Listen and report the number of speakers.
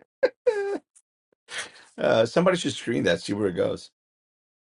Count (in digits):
1